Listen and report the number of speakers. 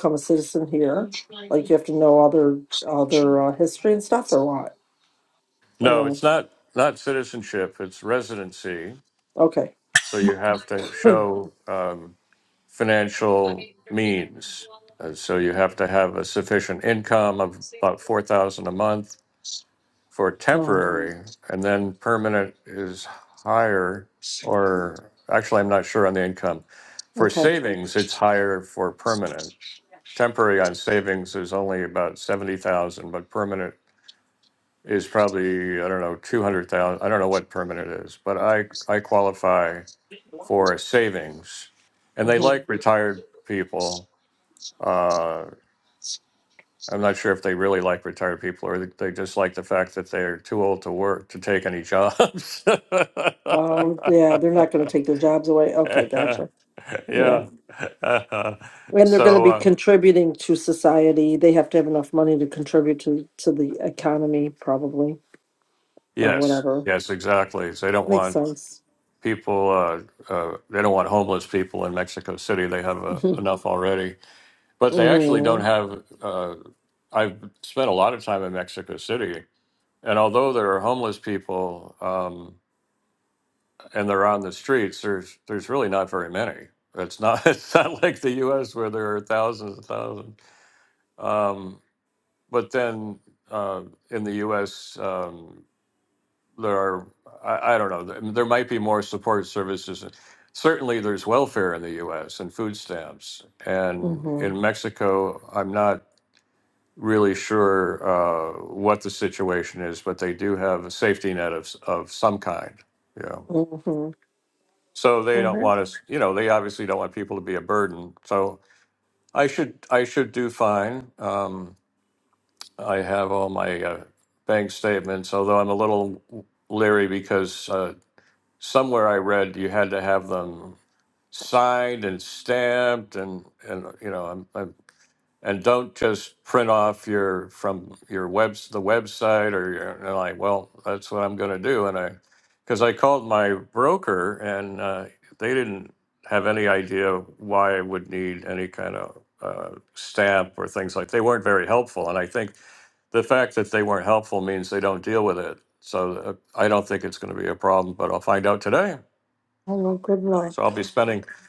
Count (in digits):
2